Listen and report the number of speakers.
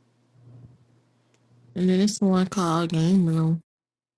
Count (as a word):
one